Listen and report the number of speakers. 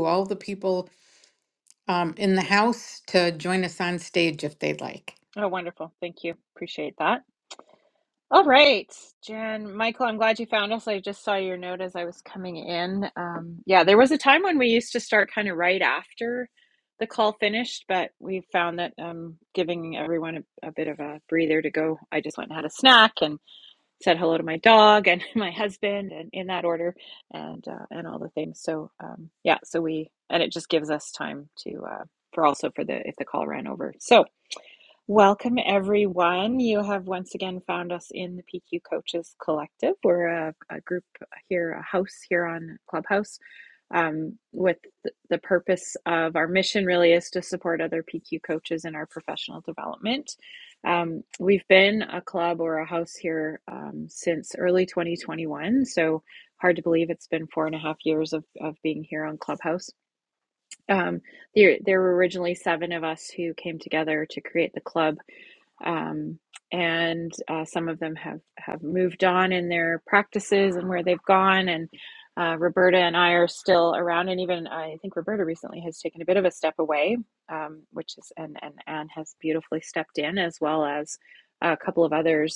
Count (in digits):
2